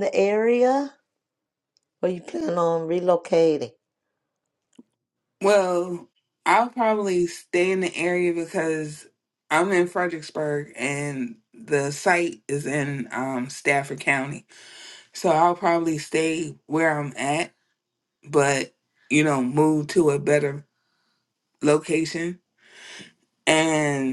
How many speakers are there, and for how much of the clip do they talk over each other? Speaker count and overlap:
two, no overlap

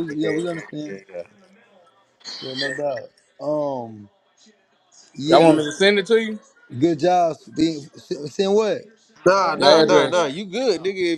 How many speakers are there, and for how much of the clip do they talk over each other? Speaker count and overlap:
three, about 16%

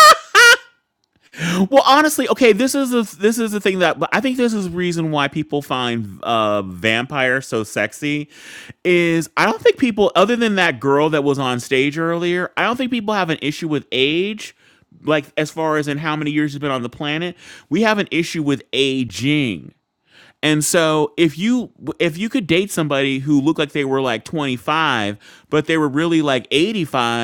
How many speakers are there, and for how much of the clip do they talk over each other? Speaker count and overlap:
one, no overlap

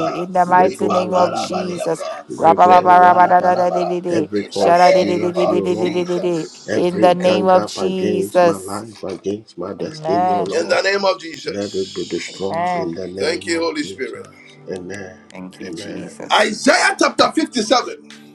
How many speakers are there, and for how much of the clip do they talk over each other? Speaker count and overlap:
three, about 62%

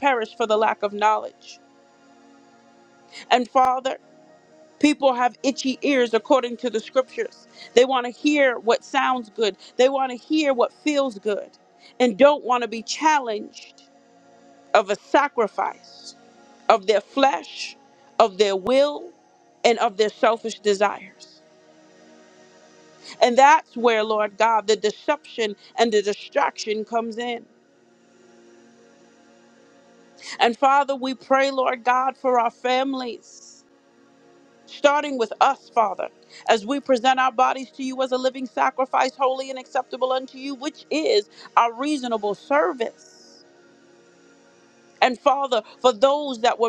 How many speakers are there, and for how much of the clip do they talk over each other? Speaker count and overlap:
one, no overlap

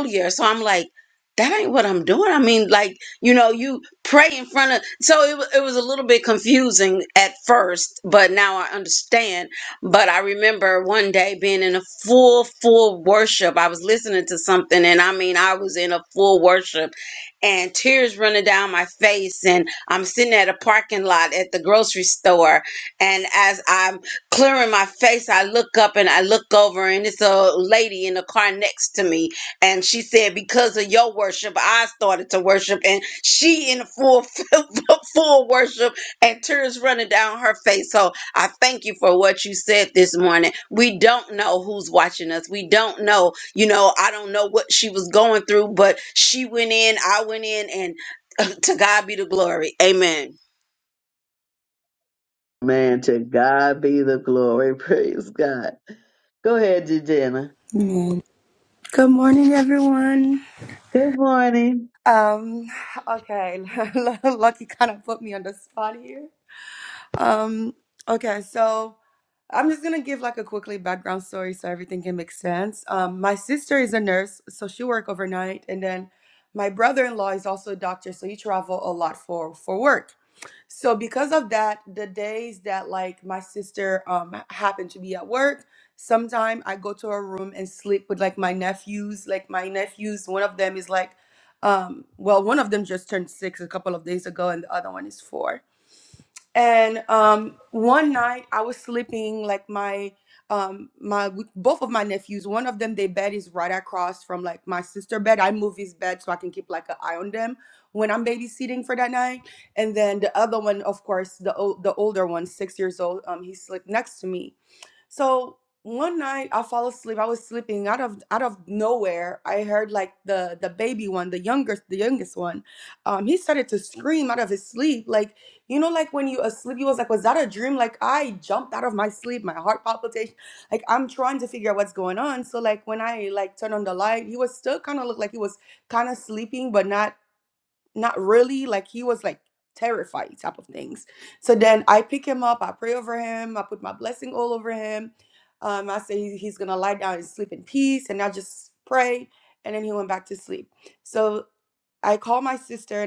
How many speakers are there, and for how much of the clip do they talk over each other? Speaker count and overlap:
three, no overlap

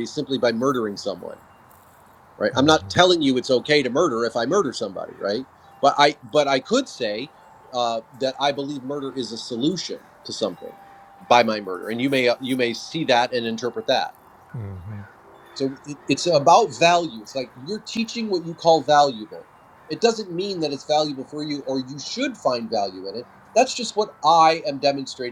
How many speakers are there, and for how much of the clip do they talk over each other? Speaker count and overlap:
one, no overlap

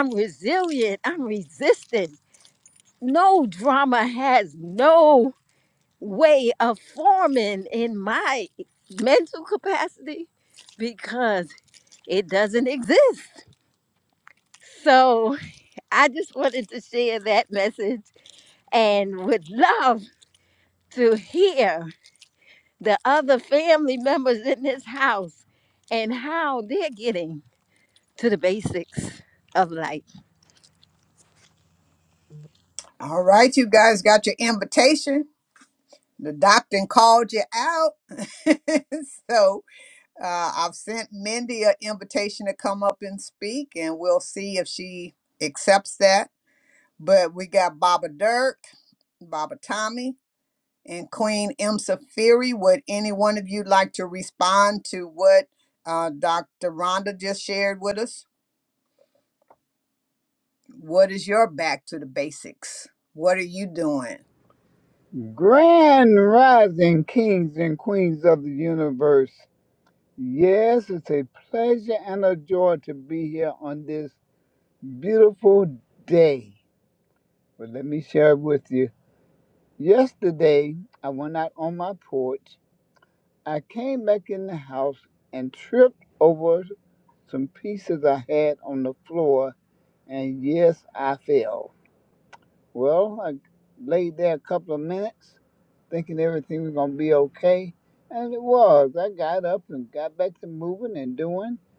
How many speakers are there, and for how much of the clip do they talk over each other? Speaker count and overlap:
three, no overlap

